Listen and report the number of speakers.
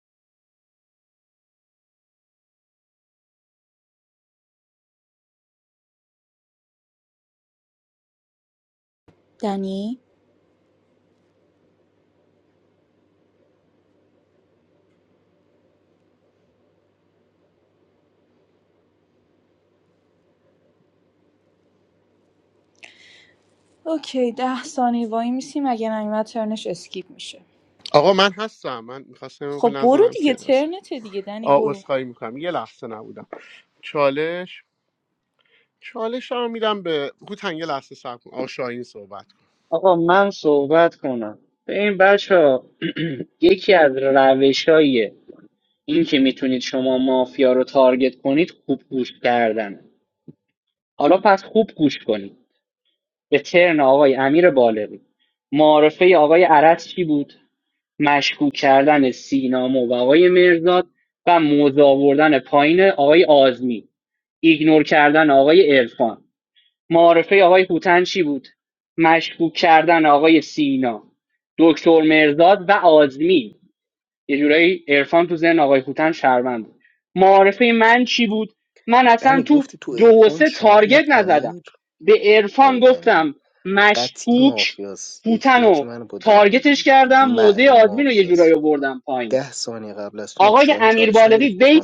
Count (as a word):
four